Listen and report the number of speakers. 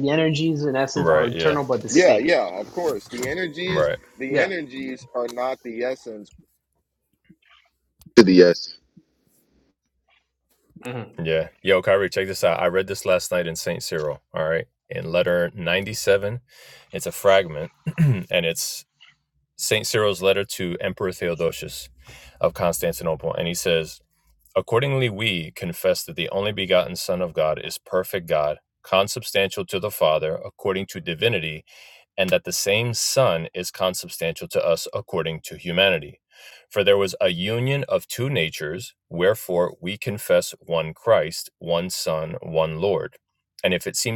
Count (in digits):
3